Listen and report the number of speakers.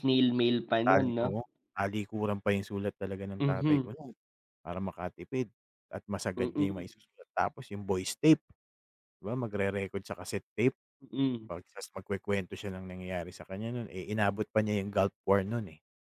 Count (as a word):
two